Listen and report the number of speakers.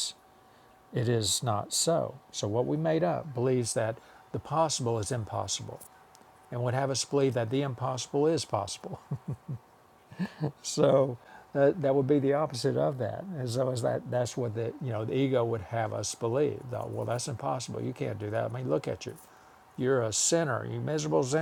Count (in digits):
1